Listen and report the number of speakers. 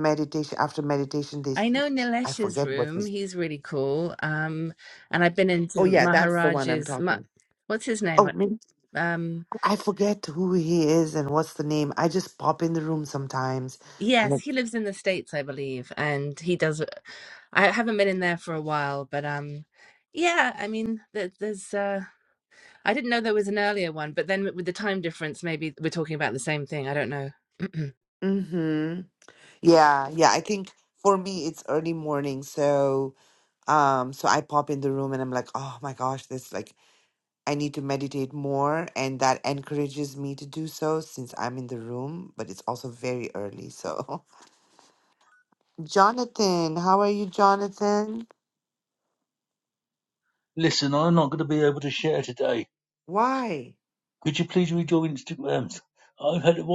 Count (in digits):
3